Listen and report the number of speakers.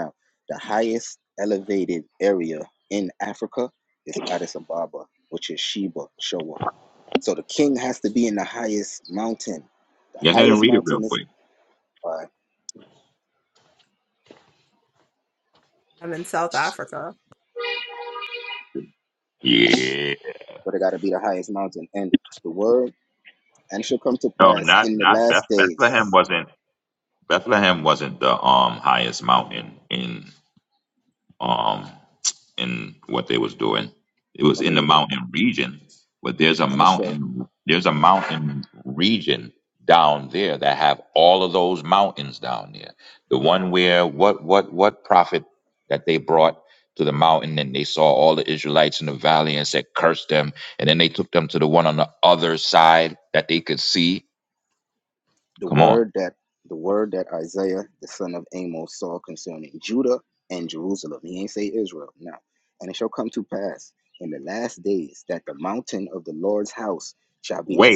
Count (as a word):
three